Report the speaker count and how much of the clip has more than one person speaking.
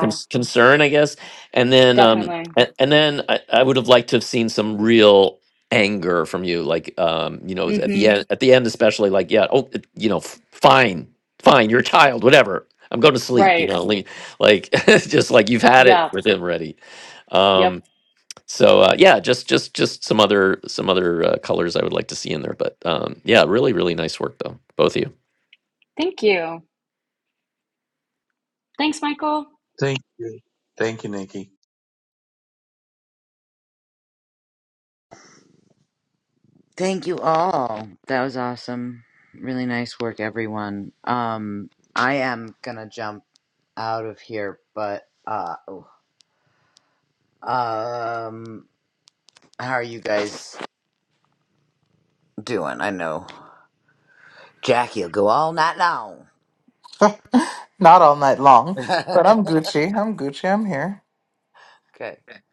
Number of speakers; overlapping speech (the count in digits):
5, about 4%